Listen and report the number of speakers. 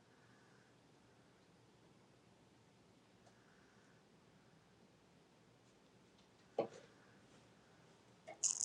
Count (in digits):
0